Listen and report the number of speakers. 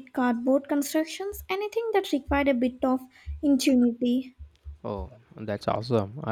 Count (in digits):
2